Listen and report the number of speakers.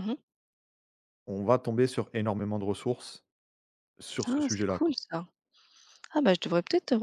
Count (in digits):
2